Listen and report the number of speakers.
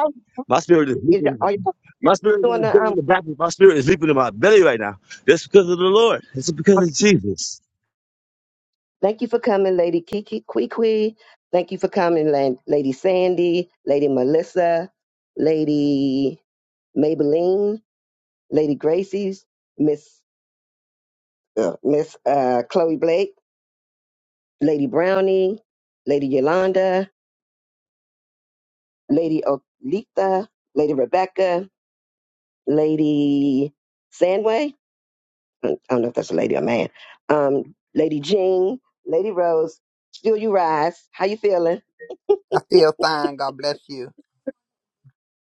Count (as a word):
three